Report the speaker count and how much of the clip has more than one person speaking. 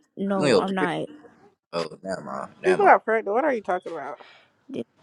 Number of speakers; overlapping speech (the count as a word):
three, about 16%